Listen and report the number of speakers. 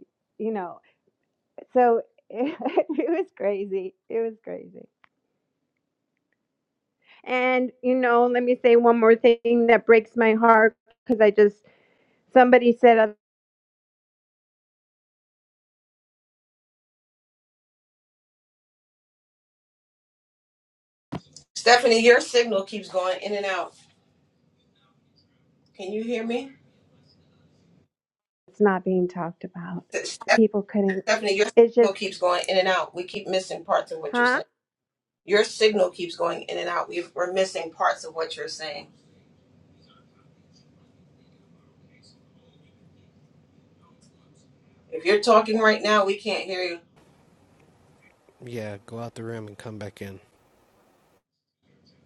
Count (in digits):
3